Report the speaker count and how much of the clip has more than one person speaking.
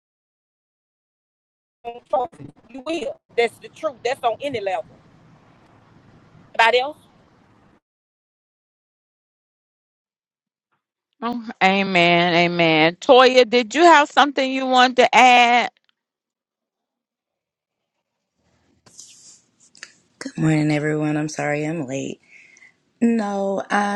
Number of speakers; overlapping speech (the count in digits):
3, no overlap